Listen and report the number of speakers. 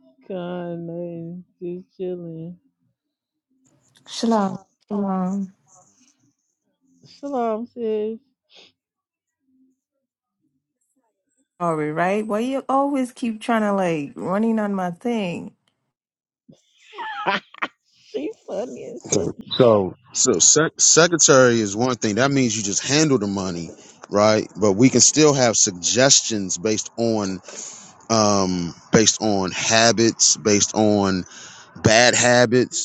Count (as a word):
three